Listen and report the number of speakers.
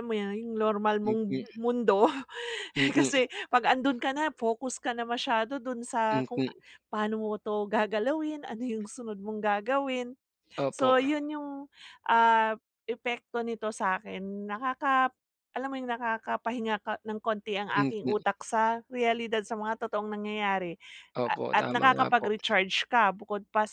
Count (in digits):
2